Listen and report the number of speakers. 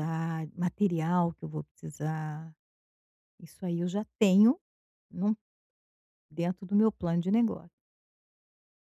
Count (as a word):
one